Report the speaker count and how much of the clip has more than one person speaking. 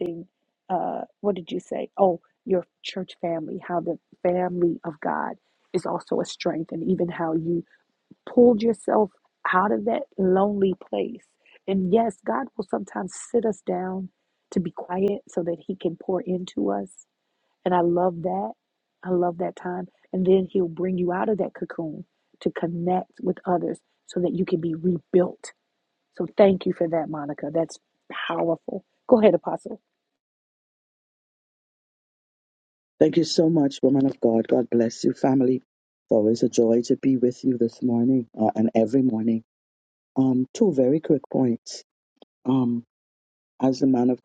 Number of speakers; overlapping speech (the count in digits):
2, no overlap